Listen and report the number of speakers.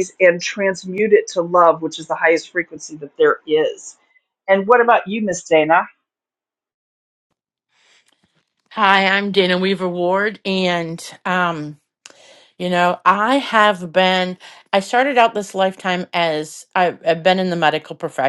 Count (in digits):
2